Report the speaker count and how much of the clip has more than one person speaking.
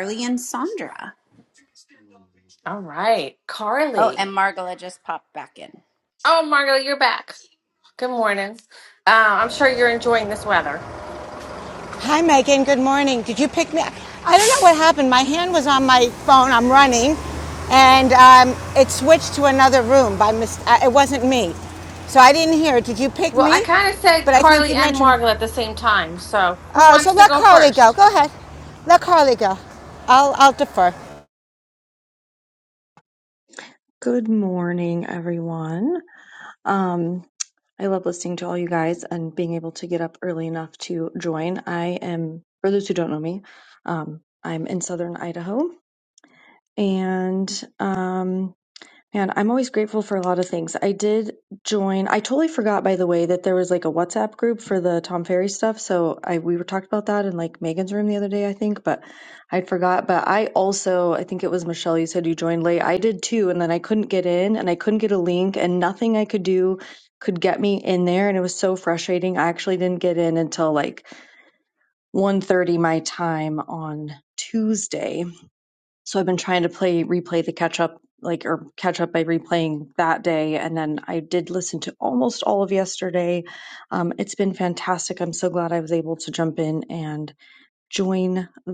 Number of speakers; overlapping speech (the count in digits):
4, about 3%